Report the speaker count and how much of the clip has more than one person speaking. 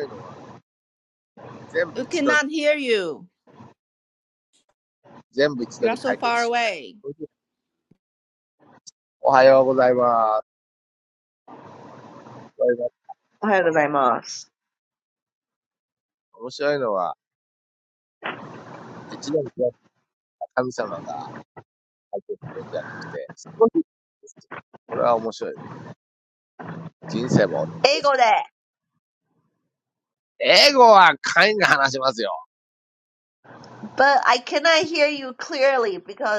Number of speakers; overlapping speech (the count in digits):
3, about 3%